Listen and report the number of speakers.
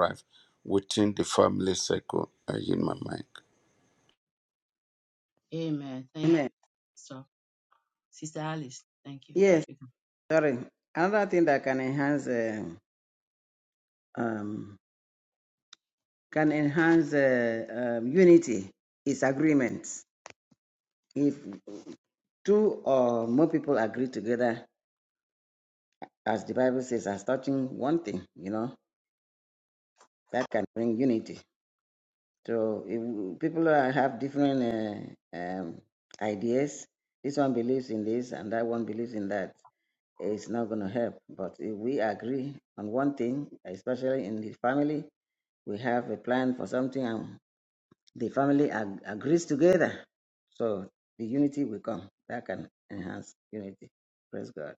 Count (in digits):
3